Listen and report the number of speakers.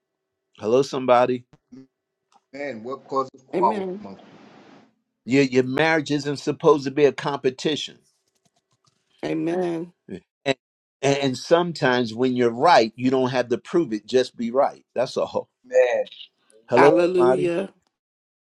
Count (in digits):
3